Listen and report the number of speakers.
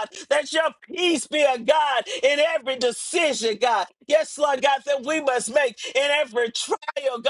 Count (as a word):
one